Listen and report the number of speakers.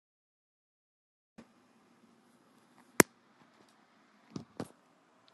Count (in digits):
0